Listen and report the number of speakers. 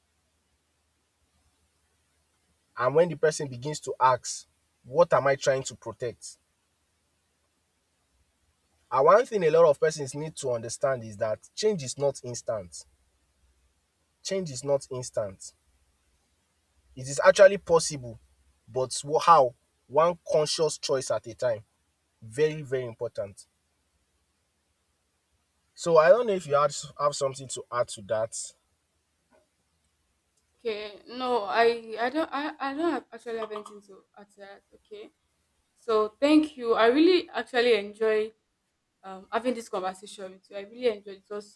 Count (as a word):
two